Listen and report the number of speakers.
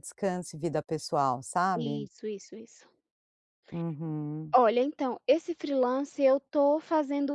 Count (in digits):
2